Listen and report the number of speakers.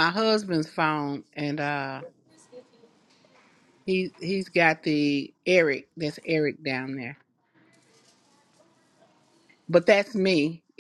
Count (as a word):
one